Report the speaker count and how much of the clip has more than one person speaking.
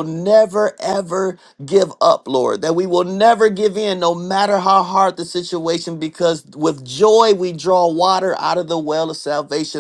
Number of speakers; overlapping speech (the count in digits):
1, no overlap